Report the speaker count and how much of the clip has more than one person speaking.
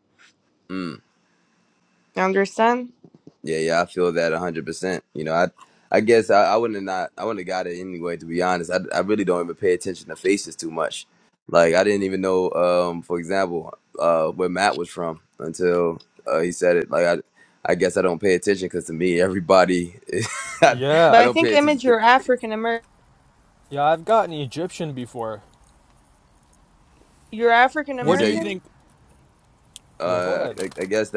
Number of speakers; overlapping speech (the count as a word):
three, about 7%